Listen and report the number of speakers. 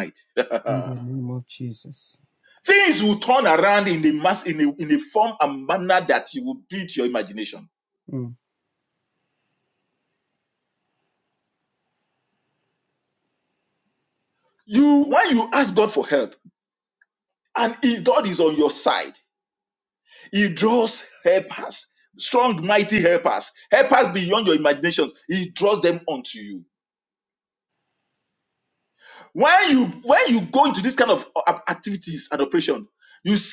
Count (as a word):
two